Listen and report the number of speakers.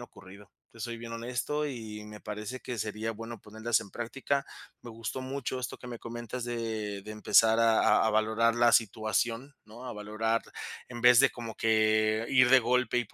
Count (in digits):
1